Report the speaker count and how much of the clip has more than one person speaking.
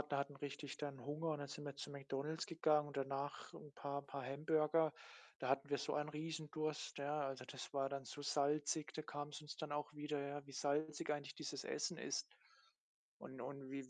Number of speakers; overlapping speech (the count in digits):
1, no overlap